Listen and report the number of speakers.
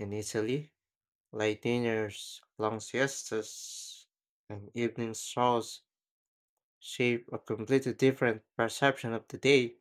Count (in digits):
1